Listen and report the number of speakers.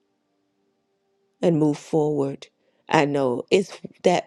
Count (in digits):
1